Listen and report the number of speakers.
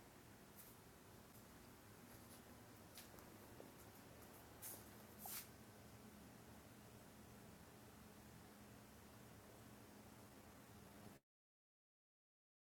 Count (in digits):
0